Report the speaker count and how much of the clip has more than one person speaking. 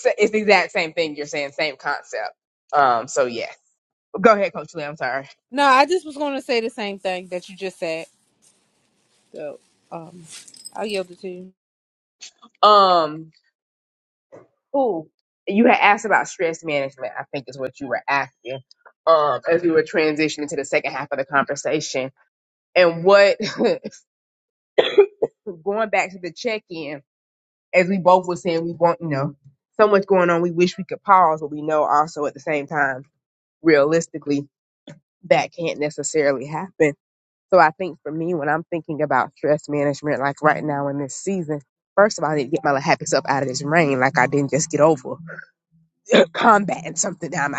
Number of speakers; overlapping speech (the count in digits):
2, no overlap